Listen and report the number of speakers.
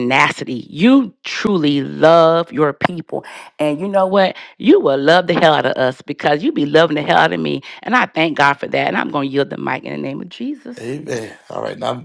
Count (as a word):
two